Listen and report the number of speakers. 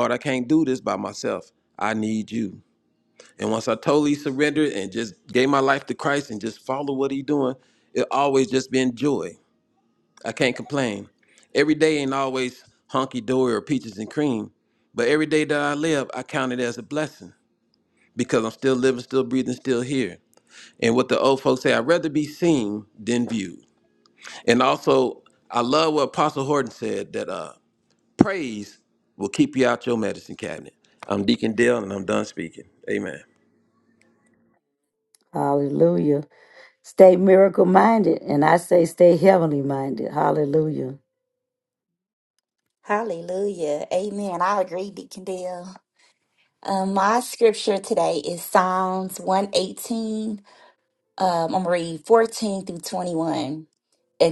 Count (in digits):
3